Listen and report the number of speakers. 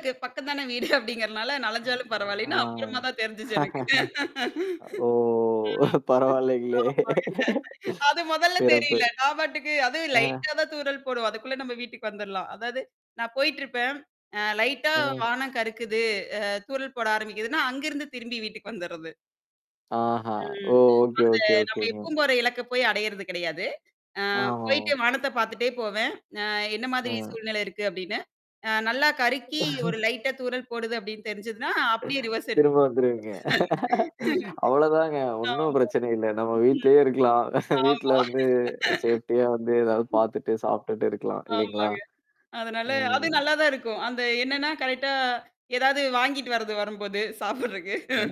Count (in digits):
2